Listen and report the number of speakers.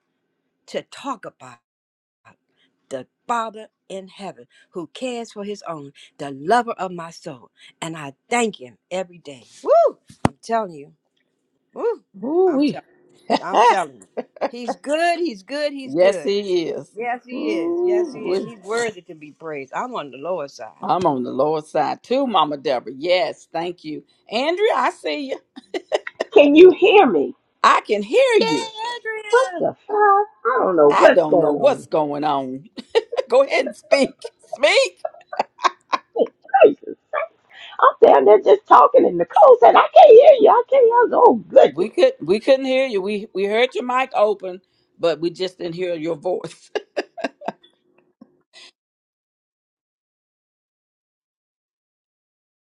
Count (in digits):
3